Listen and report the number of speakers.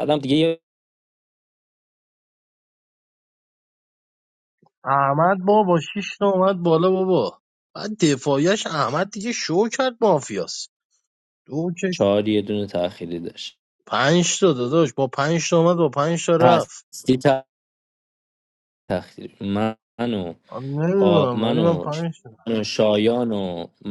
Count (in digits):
2